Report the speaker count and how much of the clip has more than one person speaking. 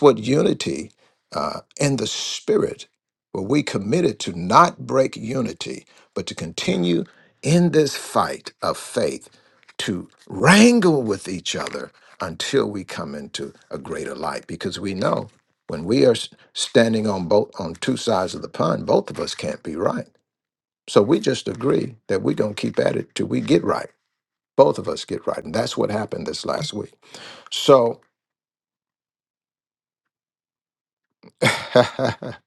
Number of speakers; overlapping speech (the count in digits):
1, no overlap